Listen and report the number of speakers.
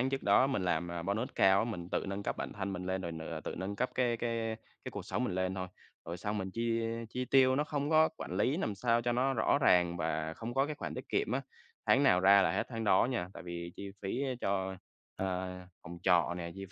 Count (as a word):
one